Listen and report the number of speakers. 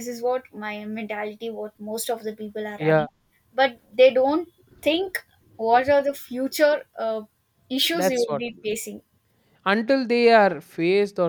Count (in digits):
2